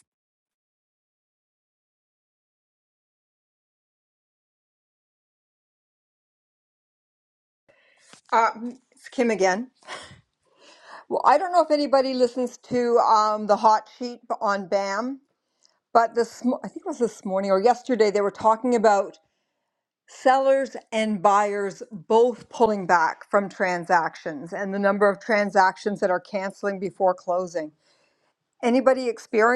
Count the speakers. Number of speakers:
1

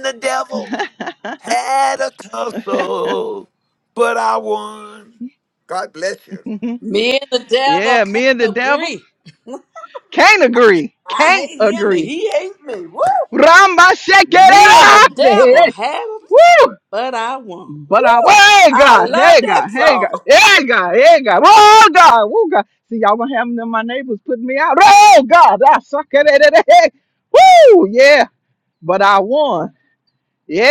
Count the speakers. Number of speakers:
3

